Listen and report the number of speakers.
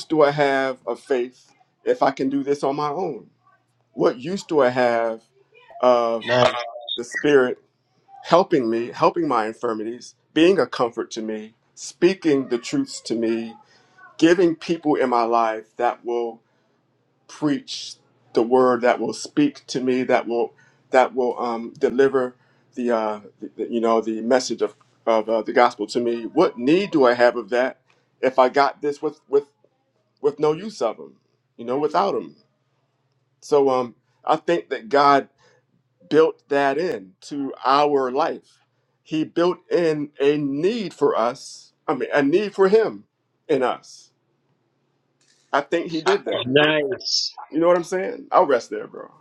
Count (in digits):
2